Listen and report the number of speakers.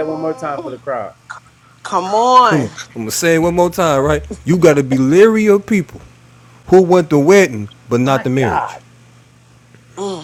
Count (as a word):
three